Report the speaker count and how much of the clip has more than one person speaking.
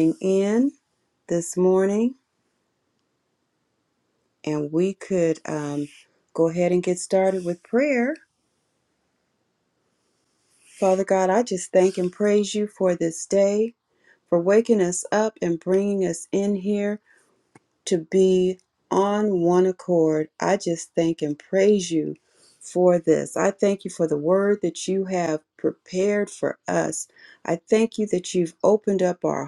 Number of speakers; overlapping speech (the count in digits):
1, no overlap